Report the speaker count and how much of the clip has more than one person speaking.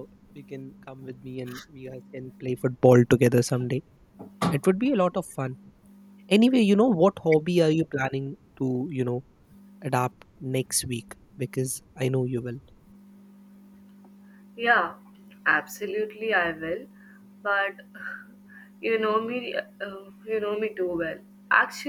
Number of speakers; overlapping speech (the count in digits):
2, no overlap